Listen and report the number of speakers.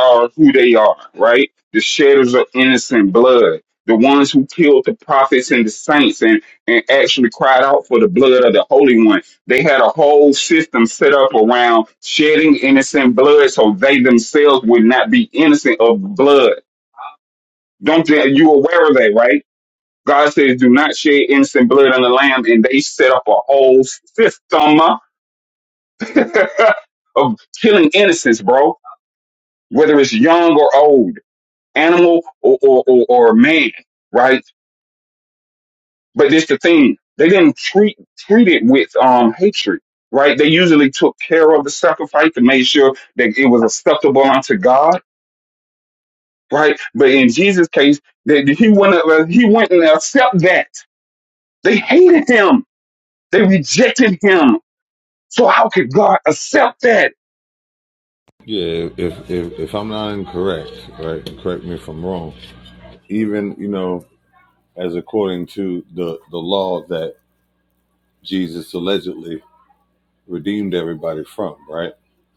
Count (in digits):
2